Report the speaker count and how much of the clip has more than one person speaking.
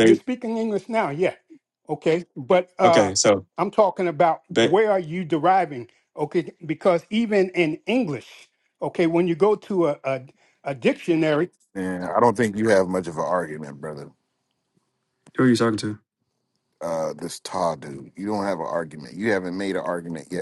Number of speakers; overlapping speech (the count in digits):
3, about 4%